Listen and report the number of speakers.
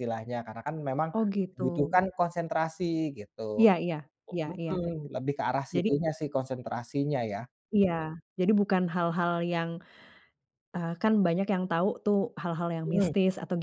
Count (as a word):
two